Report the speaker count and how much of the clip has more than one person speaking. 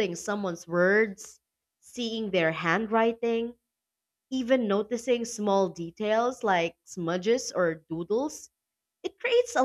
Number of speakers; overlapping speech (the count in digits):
1, no overlap